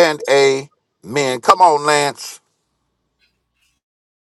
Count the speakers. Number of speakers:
1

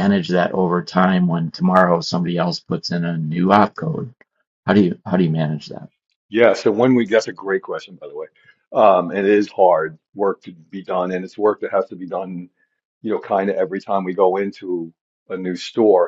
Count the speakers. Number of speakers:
2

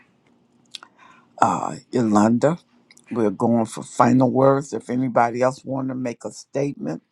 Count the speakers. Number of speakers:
1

